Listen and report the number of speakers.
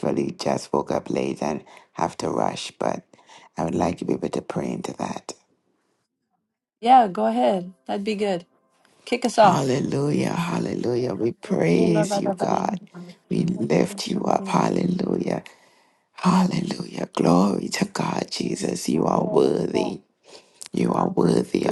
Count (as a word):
two